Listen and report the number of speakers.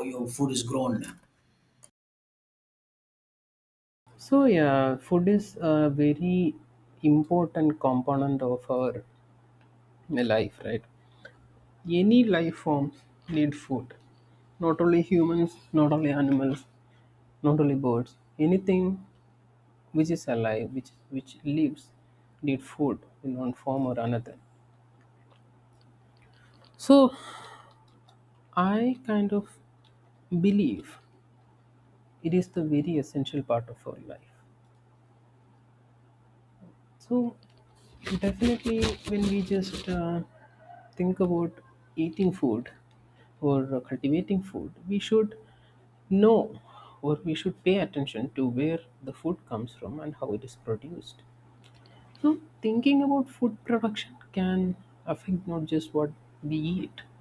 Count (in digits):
2